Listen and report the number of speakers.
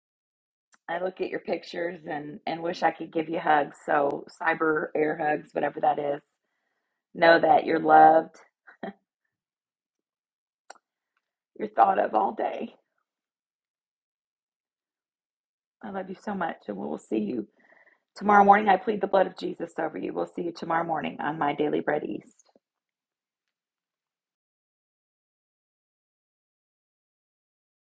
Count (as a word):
one